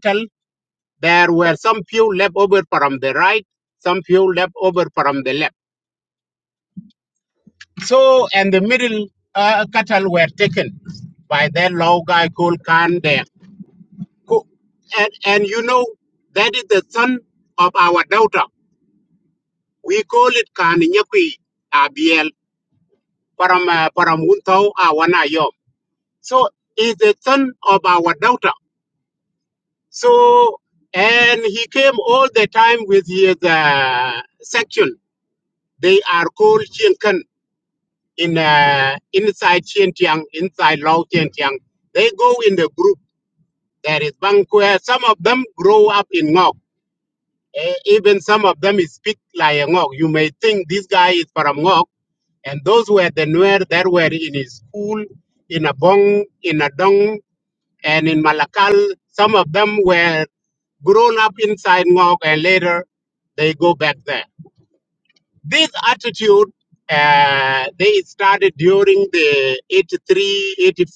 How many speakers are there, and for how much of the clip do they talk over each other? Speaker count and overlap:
1, no overlap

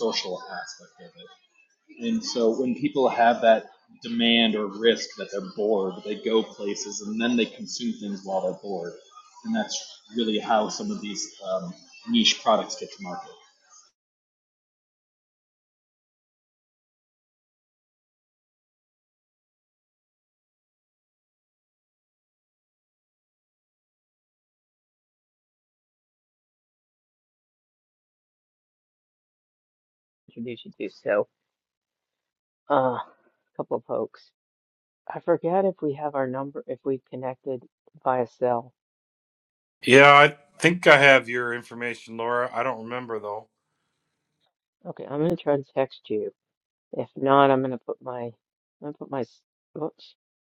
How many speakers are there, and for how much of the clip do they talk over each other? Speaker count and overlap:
3, no overlap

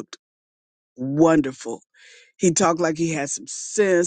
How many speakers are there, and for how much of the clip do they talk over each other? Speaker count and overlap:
1, no overlap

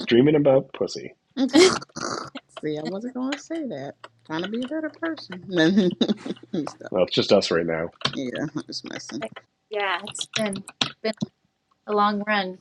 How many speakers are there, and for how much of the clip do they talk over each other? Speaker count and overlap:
3, under 1%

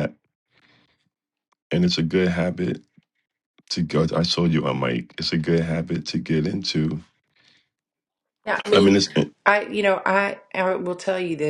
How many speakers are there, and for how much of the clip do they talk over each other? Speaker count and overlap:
2, no overlap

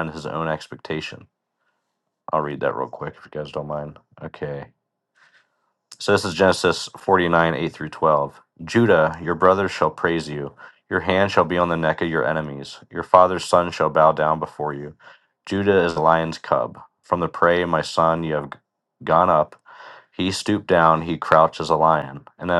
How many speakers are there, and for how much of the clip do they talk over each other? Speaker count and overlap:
1, no overlap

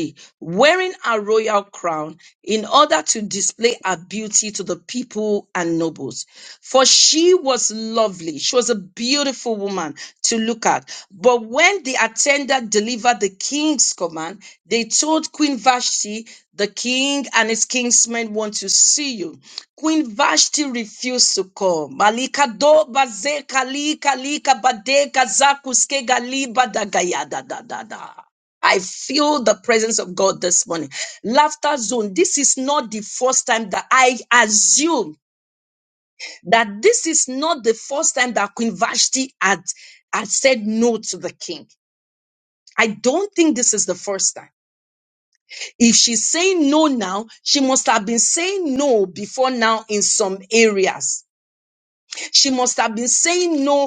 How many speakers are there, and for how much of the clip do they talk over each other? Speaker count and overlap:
1, no overlap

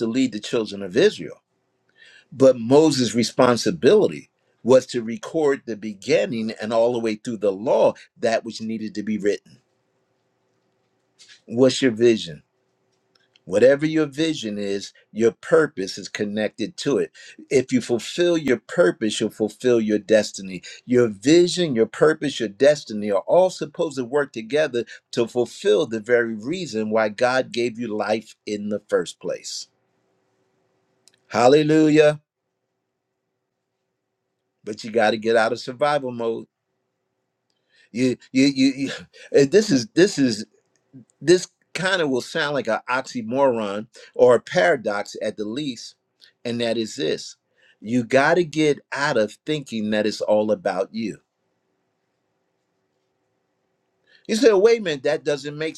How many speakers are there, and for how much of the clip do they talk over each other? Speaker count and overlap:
1, no overlap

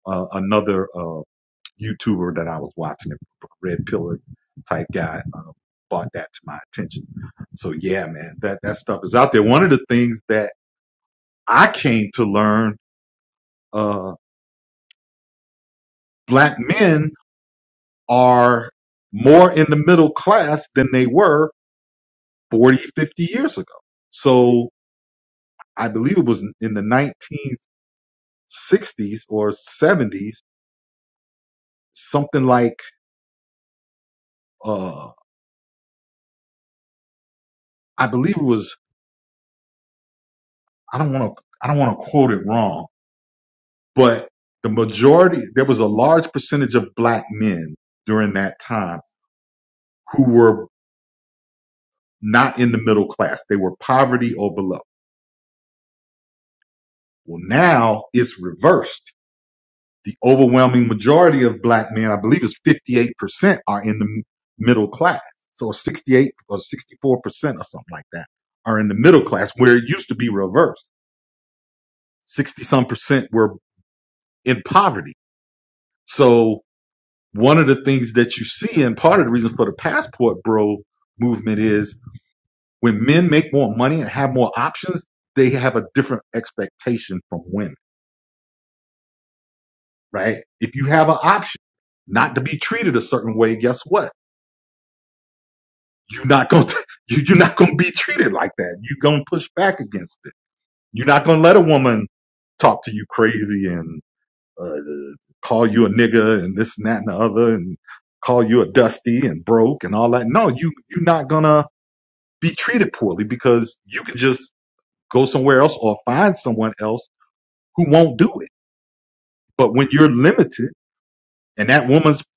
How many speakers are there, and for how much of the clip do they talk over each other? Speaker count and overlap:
1, no overlap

